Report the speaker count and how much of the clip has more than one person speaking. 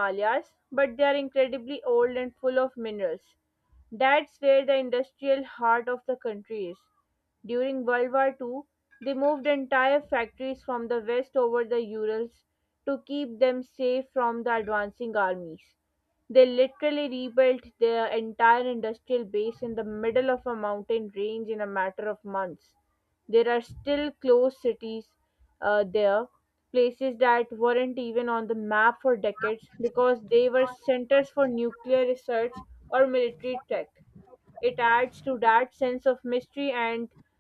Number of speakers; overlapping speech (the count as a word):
one, no overlap